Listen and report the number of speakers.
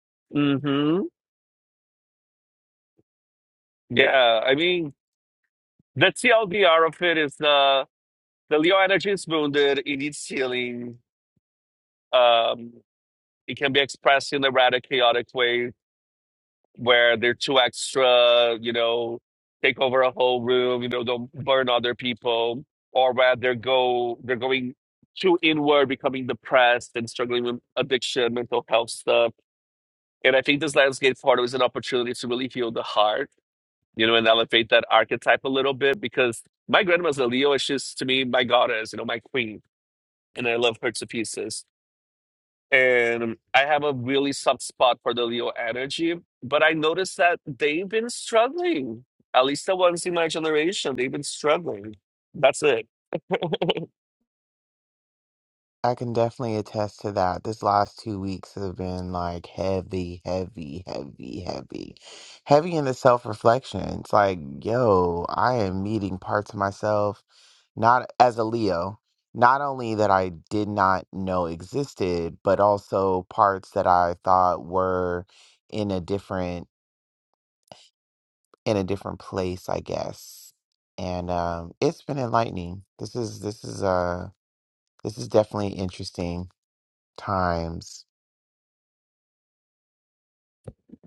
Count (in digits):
2